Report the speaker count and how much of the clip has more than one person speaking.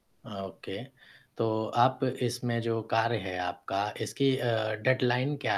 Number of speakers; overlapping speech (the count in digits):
1, no overlap